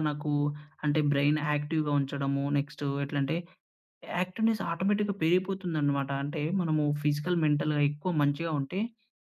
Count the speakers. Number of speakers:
1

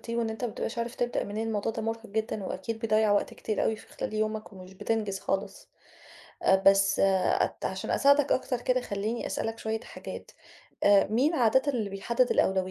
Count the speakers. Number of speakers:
1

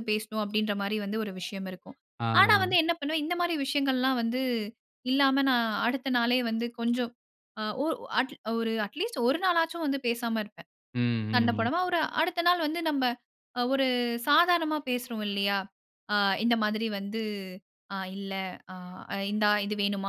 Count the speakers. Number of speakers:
2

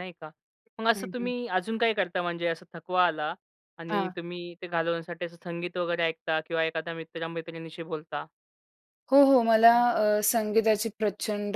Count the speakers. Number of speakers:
2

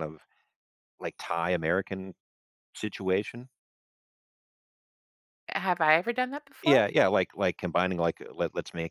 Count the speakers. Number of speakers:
2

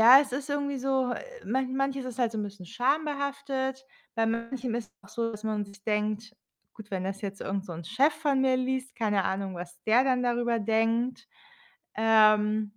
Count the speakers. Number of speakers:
1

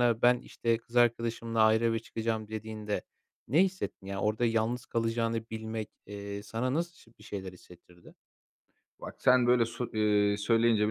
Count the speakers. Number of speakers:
2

